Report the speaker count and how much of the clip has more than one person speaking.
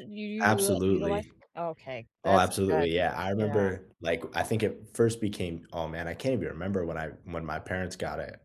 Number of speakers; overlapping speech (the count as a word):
two, about 21%